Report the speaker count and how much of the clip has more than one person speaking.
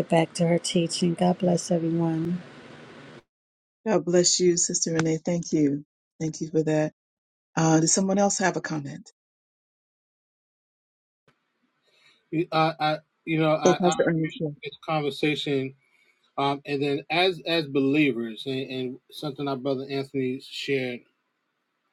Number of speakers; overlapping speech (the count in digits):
3, about 2%